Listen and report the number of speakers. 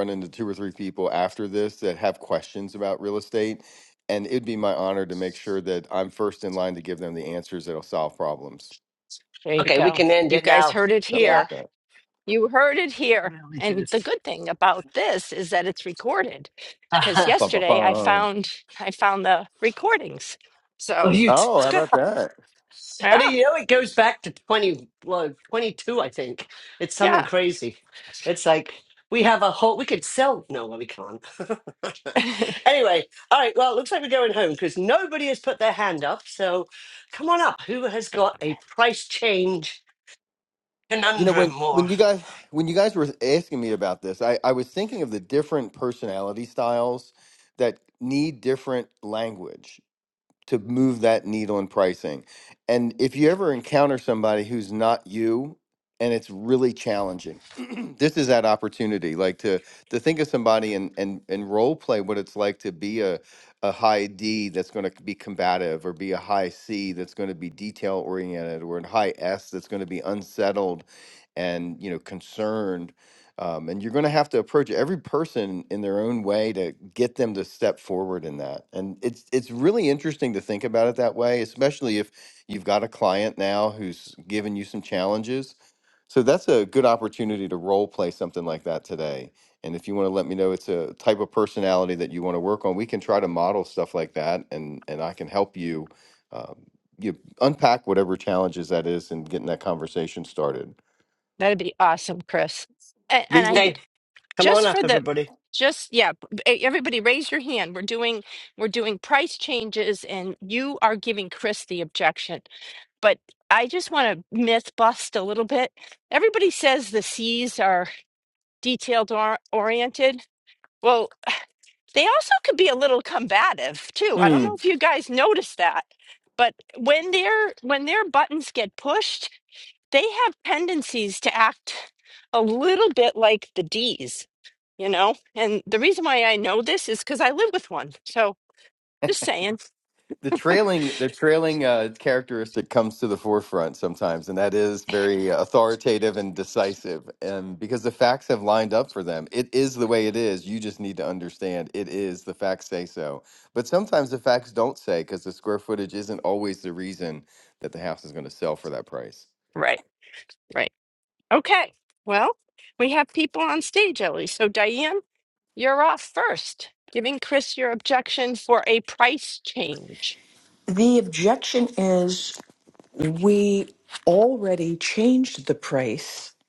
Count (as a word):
four